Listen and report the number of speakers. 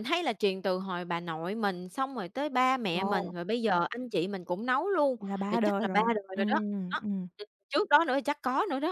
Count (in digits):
2